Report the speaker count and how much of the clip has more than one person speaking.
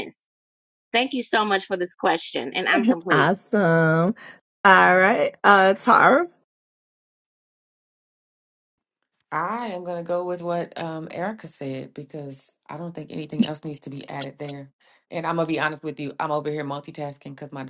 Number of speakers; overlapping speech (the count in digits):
3, about 1%